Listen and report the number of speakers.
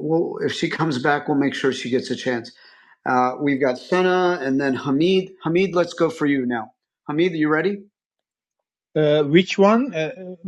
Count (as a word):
two